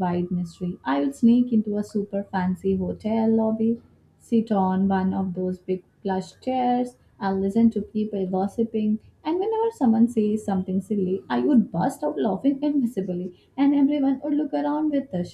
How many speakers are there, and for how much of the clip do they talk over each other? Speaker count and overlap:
one, no overlap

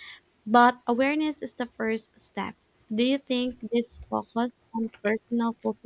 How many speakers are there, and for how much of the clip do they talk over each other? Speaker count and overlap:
one, no overlap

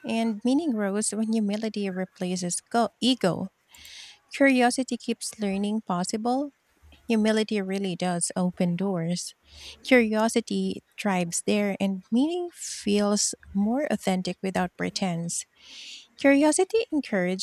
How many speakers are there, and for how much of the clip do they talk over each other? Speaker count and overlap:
one, no overlap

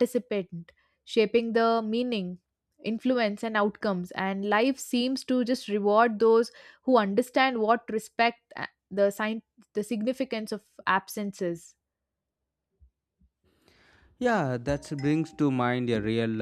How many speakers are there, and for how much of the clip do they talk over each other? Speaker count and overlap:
two, no overlap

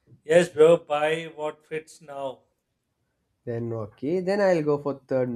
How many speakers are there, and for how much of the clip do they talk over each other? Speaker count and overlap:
two, no overlap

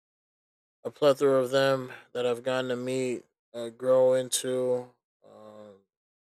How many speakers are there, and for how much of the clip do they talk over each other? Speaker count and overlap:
one, no overlap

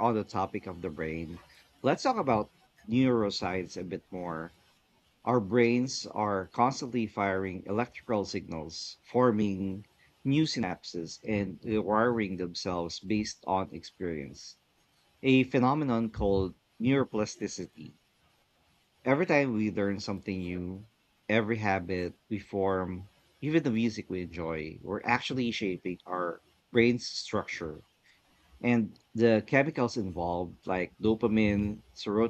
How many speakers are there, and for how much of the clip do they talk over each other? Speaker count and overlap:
one, no overlap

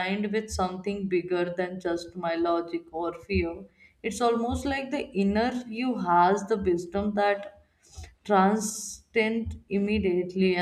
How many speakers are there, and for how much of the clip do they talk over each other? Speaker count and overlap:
one, no overlap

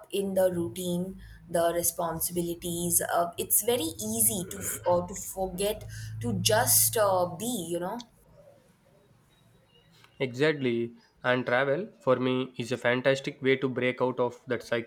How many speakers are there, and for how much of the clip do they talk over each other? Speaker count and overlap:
two, no overlap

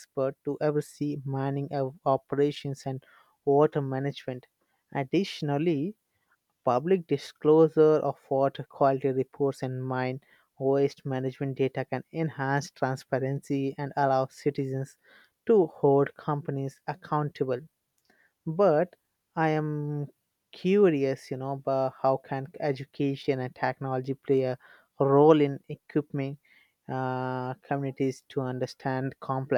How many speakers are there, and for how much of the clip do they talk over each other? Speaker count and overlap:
one, no overlap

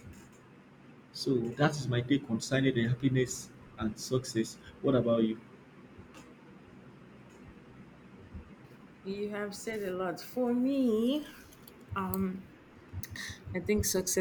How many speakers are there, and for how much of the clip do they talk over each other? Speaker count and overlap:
two, no overlap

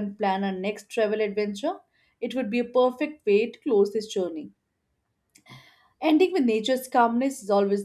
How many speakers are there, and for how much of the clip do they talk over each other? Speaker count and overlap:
one, no overlap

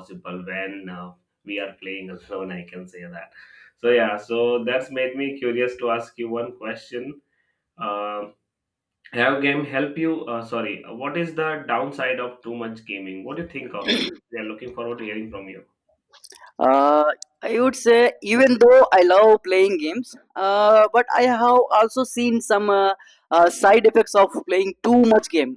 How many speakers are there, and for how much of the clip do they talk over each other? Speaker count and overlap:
two, no overlap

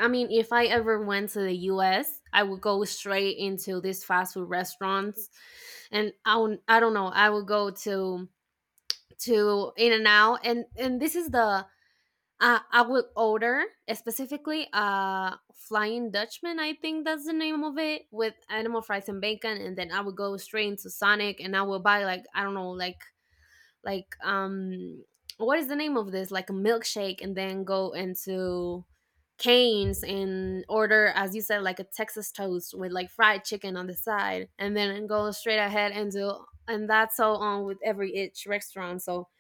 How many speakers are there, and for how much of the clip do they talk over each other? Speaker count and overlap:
one, no overlap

